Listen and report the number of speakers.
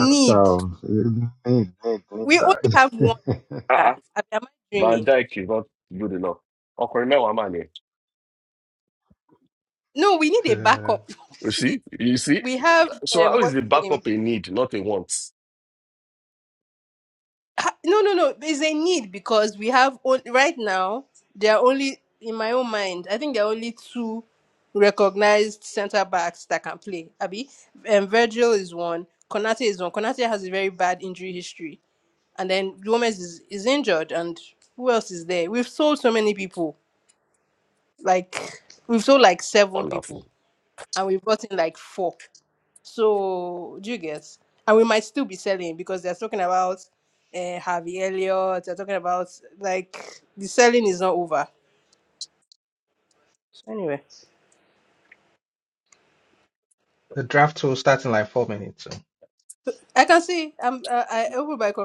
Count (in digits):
4